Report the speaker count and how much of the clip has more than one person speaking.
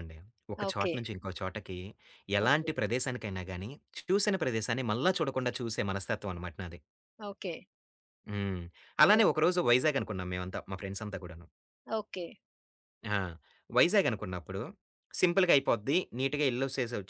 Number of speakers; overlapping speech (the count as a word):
two, about 5%